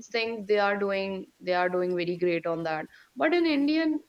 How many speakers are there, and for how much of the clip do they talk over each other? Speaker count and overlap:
1, no overlap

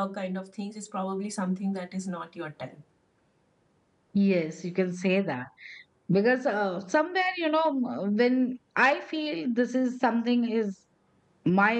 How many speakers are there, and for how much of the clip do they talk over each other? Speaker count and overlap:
2, no overlap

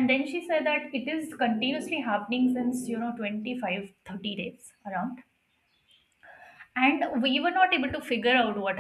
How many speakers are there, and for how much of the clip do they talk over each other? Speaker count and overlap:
1, no overlap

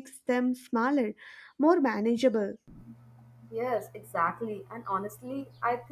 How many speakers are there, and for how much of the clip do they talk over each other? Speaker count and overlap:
2, no overlap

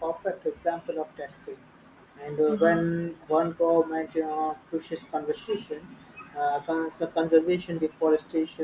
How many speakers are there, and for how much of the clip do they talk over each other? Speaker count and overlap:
1, no overlap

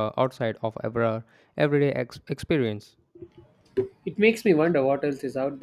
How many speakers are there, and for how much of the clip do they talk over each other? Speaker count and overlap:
2, no overlap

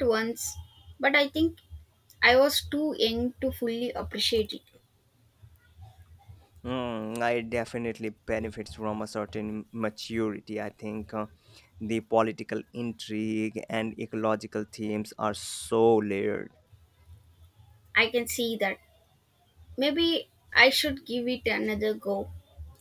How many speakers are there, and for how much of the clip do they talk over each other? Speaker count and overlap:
2, no overlap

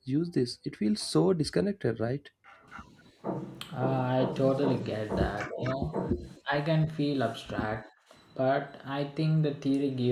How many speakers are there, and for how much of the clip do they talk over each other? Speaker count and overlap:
2, no overlap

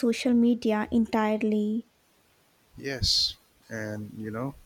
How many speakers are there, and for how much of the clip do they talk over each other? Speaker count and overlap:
2, no overlap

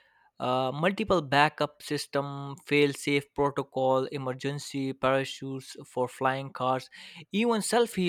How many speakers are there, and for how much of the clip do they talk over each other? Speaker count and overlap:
1, no overlap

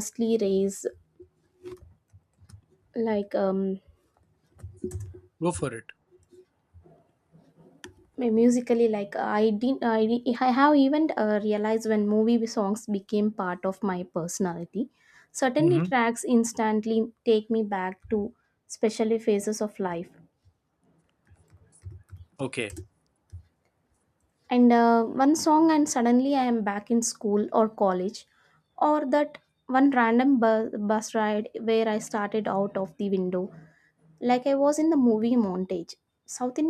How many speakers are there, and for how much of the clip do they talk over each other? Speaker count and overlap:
2, about 1%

